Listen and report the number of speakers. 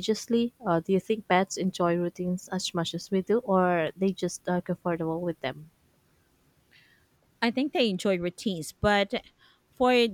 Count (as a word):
two